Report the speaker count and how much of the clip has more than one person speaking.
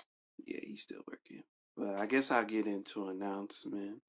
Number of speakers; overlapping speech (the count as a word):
one, no overlap